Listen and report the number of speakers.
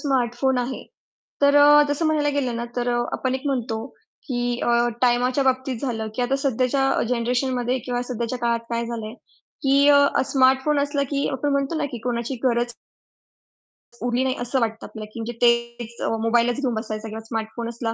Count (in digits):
1